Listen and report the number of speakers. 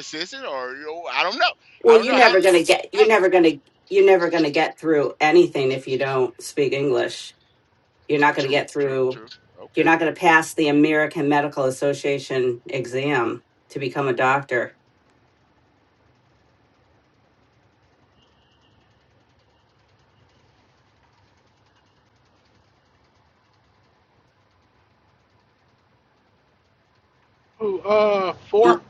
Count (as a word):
three